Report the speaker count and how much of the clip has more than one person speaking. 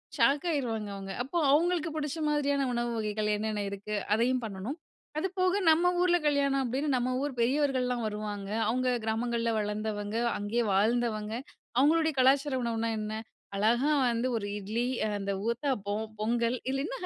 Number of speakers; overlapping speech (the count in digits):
1, no overlap